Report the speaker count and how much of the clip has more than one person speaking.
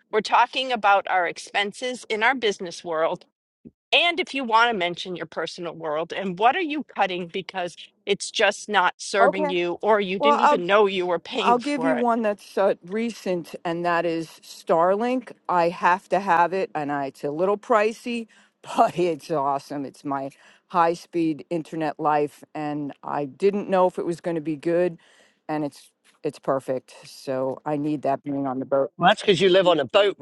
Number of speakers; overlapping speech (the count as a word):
three, about 5%